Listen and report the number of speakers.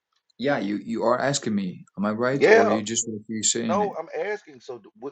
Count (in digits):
2